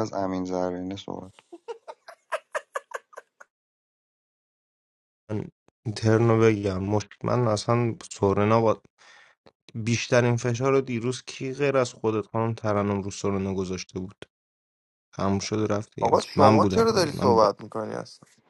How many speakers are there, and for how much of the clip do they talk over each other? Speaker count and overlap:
three, about 8%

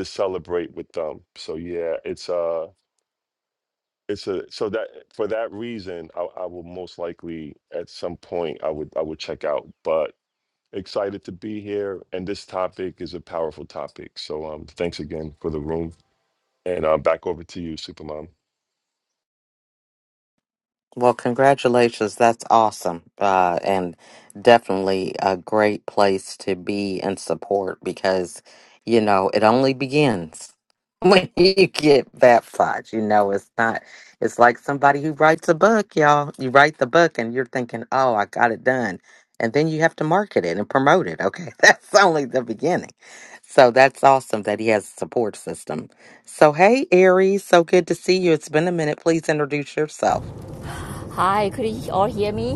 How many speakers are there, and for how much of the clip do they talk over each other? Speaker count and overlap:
three, no overlap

